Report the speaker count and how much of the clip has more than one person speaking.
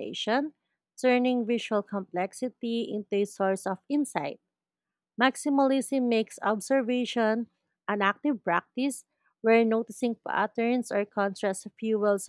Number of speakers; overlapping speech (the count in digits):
1, no overlap